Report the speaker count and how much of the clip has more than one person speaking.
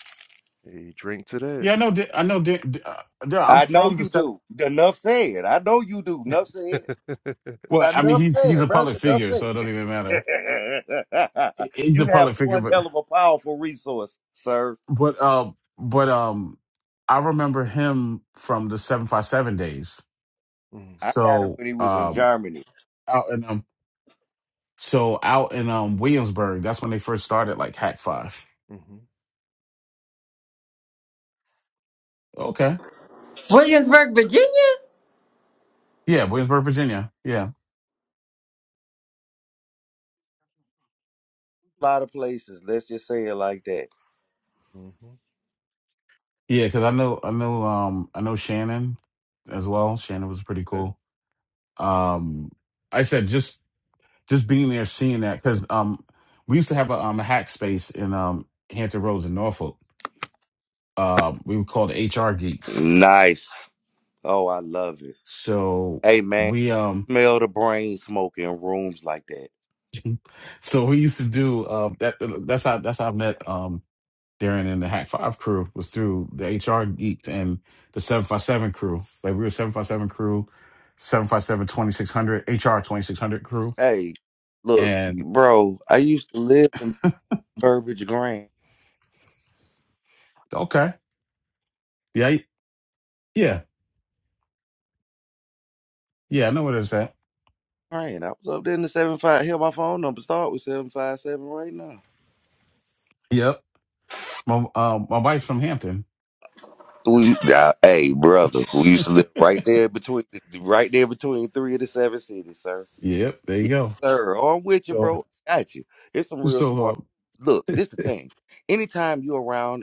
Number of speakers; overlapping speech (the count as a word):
four, about 5%